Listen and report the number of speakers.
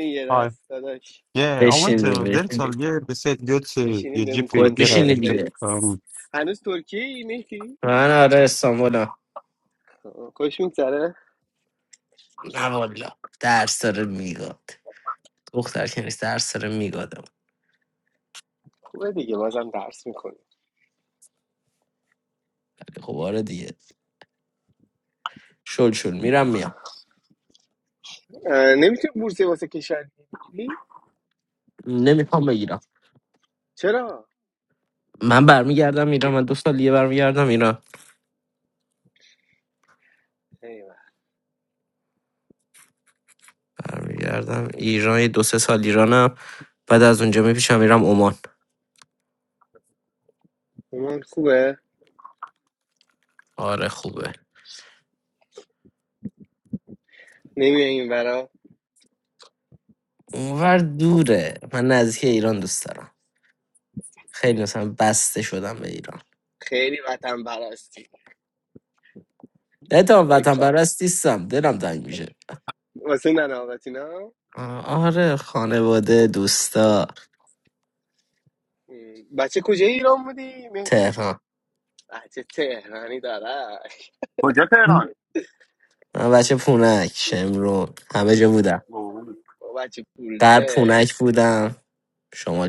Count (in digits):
4